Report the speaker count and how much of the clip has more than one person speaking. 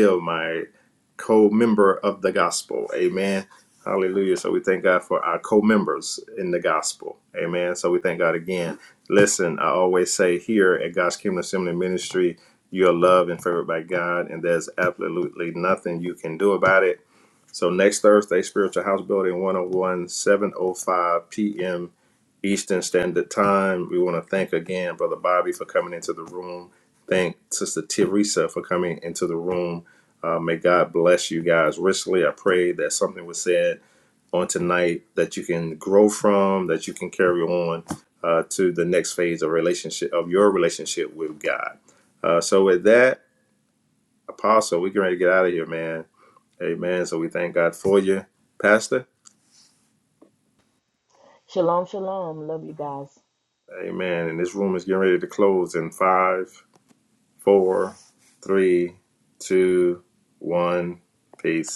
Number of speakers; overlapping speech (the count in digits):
2, no overlap